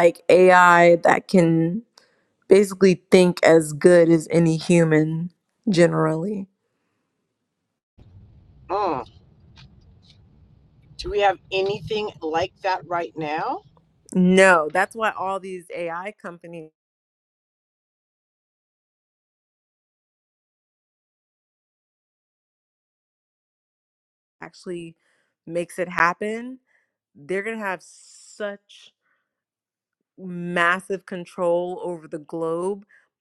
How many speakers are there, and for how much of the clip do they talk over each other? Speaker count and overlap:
2, no overlap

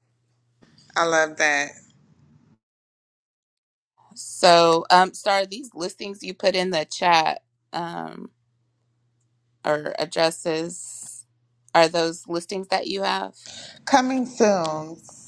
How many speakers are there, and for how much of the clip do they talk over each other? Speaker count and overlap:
2, no overlap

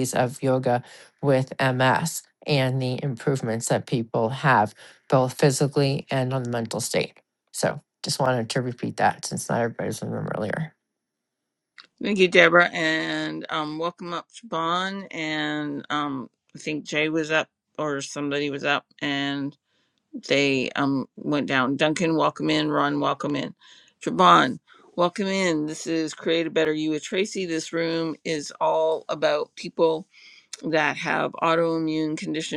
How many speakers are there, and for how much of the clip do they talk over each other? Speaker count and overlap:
2, no overlap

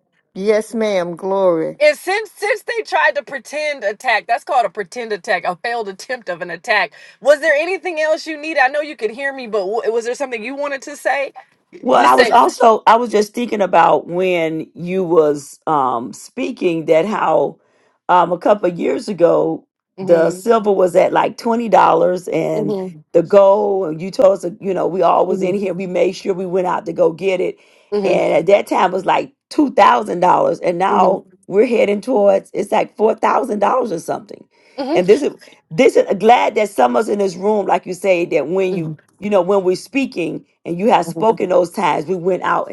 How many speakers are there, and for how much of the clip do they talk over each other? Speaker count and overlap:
3, about 5%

